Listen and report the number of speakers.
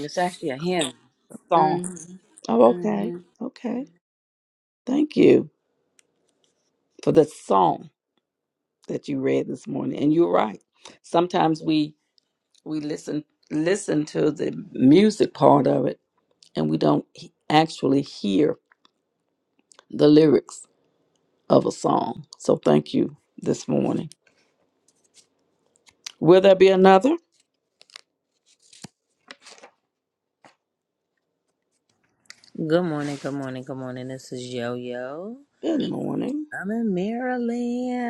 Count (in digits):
3